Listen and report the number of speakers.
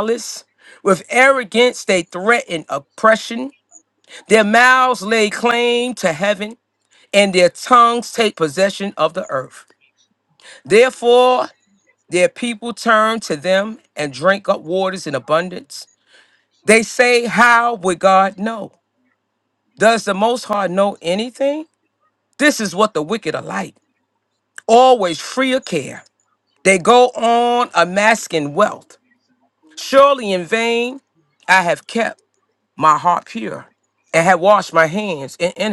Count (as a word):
one